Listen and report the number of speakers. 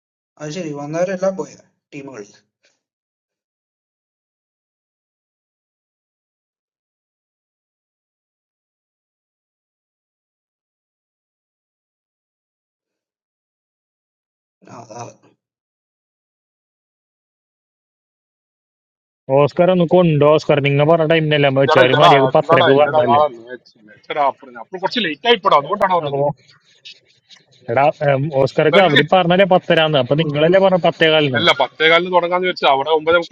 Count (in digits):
3